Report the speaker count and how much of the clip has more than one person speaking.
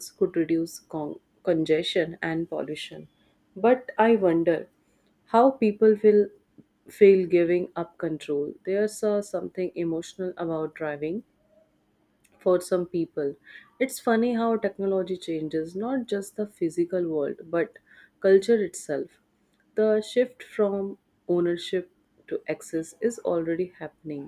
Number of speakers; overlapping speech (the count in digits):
1, no overlap